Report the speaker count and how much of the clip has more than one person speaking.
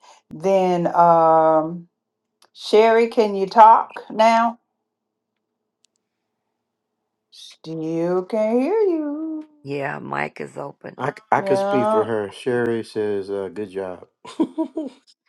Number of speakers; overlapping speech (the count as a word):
three, about 5%